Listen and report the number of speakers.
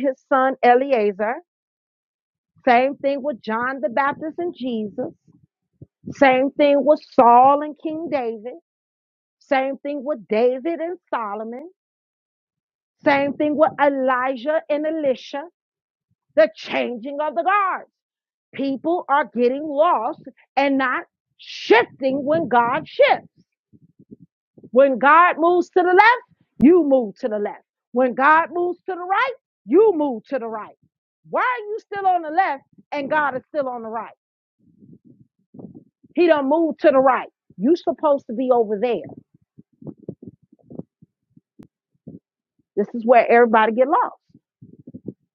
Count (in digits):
1